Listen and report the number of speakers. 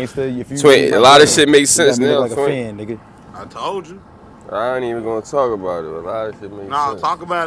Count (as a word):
three